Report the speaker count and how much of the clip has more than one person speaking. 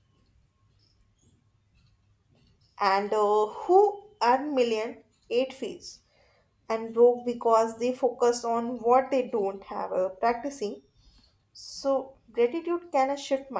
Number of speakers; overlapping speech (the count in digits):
1, no overlap